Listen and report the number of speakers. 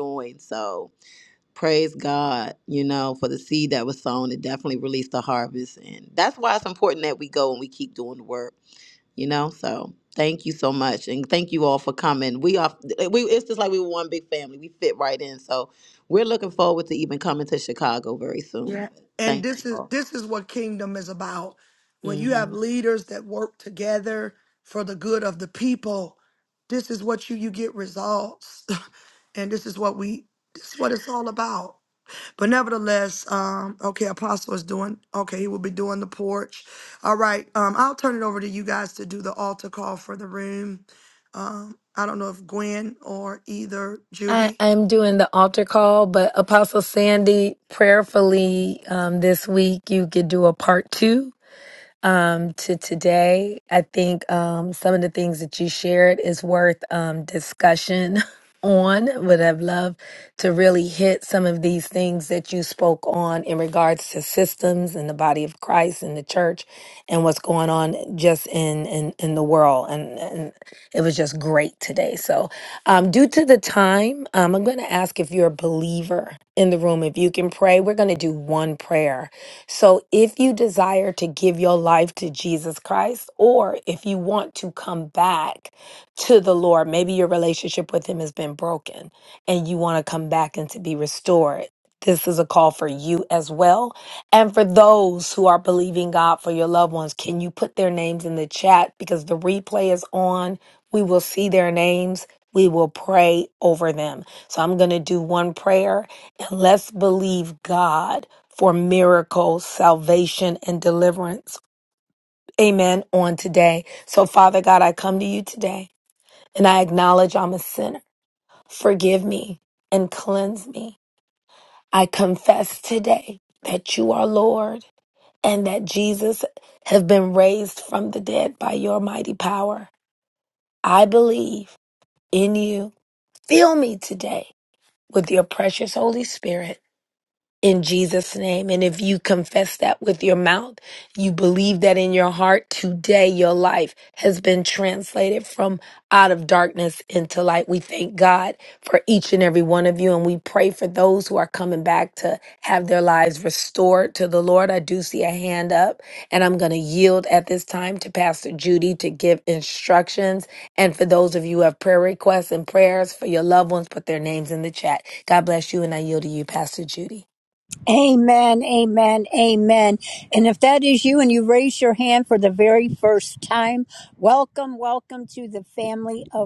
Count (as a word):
four